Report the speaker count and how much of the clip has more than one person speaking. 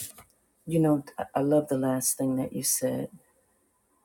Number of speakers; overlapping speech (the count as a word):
one, no overlap